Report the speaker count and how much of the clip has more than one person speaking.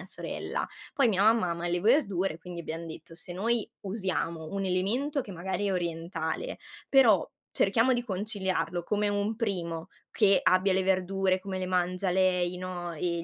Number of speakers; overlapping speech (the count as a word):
one, no overlap